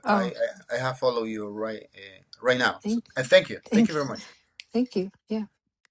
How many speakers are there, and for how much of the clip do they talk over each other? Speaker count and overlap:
two, about 12%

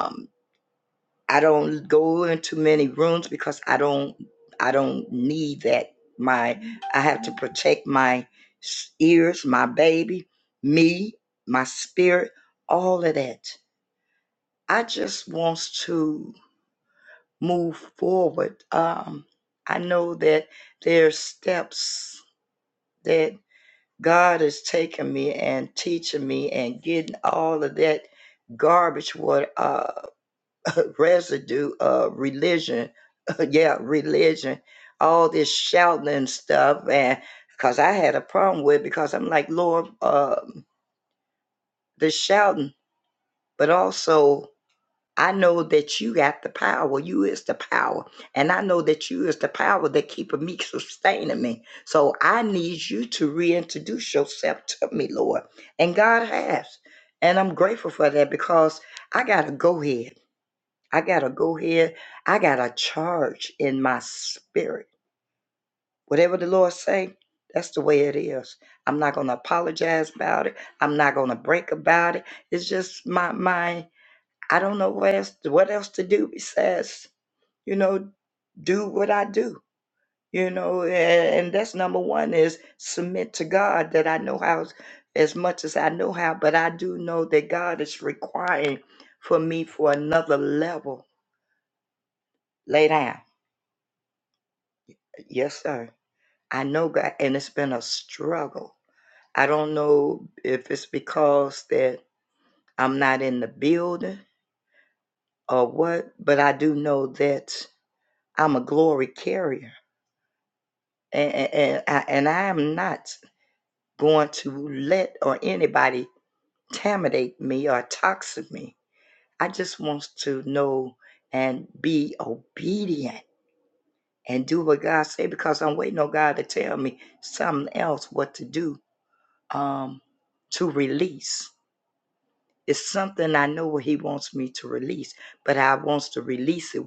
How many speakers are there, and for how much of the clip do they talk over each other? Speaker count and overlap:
one, no overlap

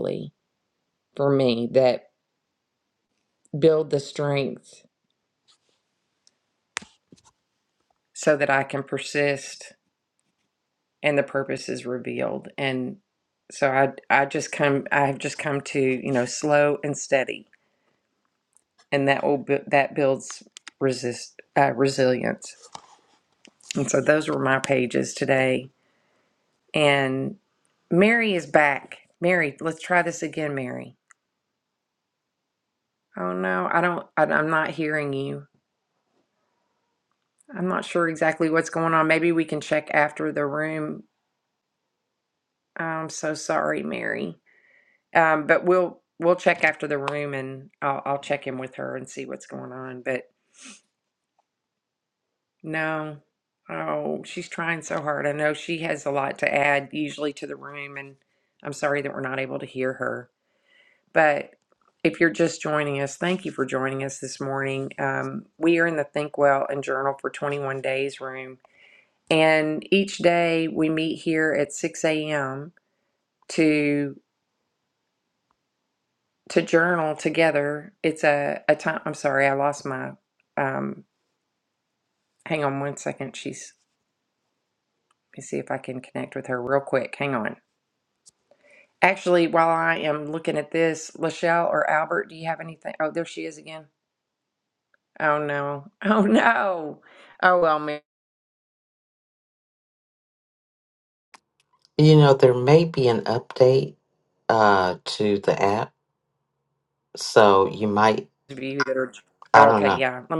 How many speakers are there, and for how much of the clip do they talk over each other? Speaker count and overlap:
two, under 1%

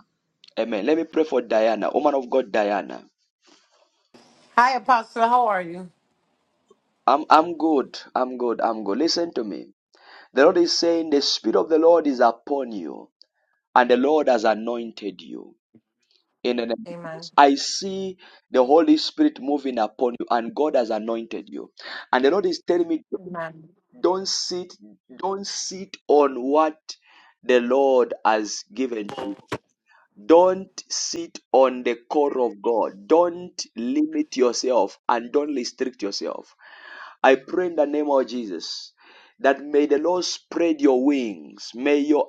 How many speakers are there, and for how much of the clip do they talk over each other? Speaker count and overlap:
two, about 1%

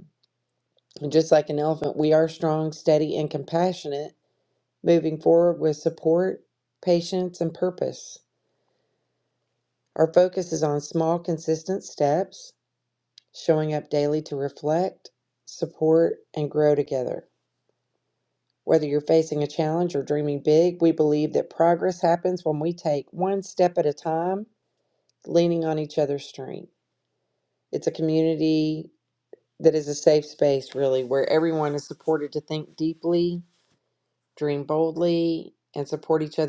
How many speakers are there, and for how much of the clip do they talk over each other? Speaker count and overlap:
one, no overlap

